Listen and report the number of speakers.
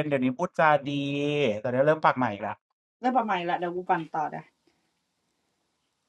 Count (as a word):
two